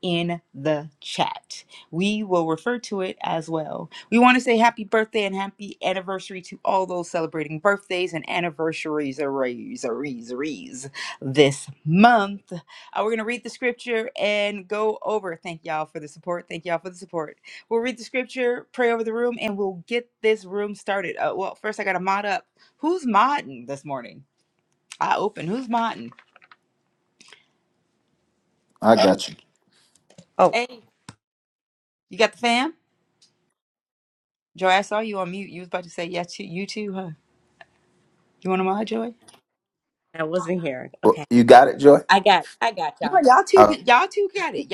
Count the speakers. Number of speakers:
3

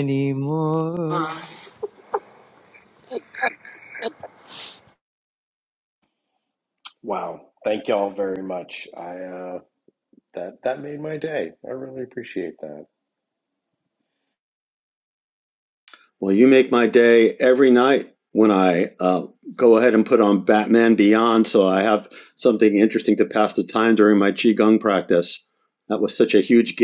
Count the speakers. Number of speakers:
3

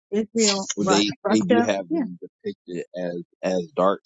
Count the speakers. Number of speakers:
2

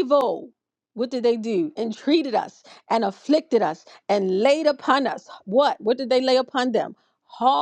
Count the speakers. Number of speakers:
1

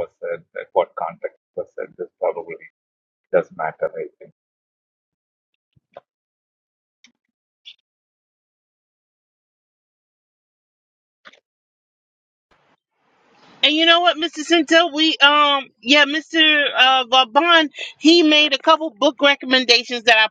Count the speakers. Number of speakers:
2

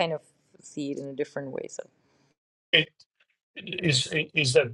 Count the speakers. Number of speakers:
2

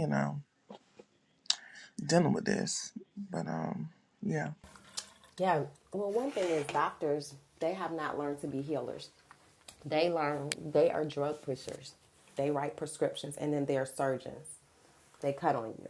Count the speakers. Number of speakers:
2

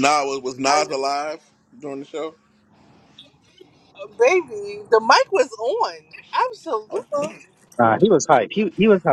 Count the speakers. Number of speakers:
3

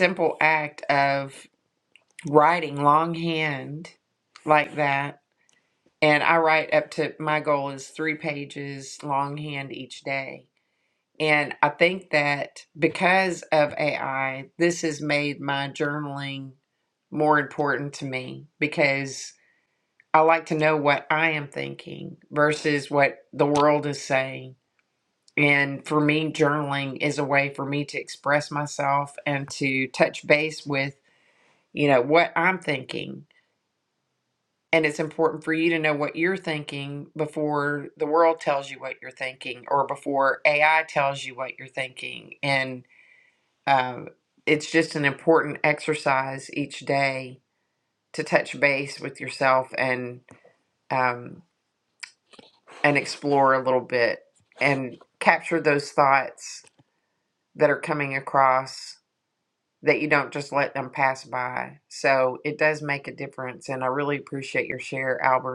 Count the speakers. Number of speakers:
1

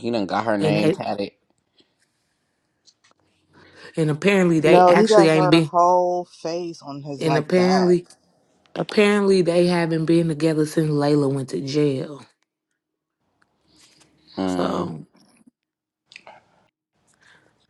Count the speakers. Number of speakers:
3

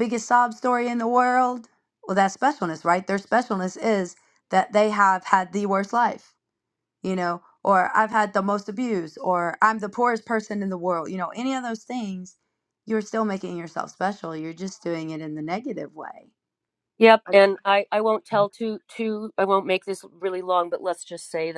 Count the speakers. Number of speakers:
2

